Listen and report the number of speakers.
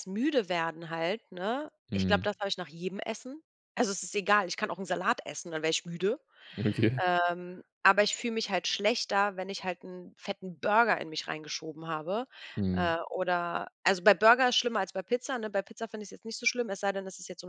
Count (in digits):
2